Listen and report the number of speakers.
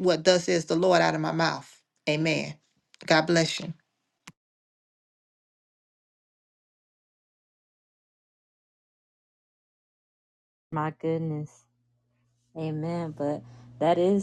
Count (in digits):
2